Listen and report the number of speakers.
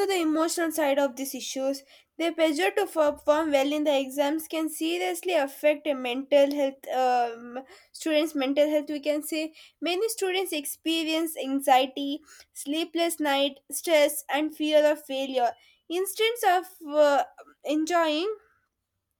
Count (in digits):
1